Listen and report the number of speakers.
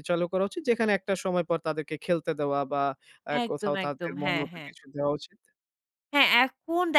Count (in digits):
2